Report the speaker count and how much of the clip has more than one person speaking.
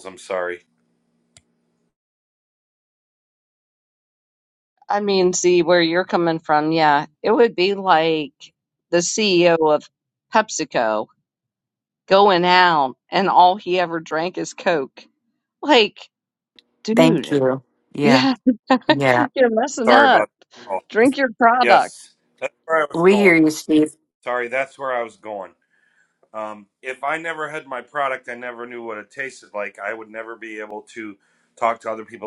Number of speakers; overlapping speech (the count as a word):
three, about 5%